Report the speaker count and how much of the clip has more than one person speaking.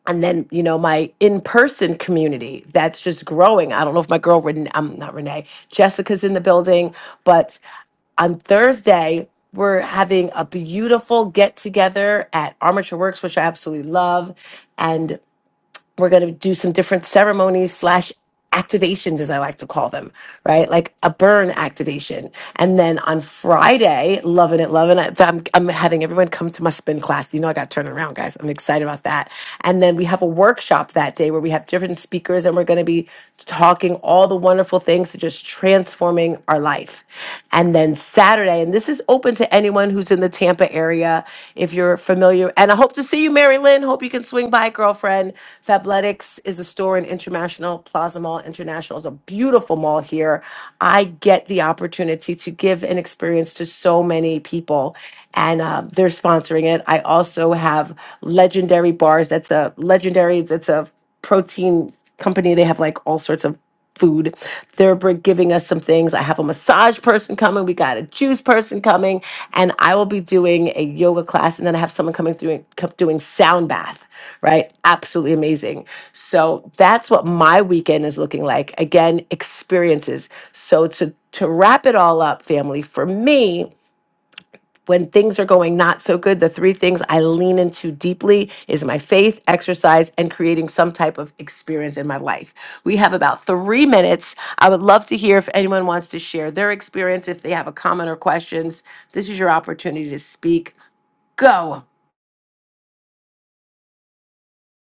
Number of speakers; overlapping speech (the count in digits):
1, no overlap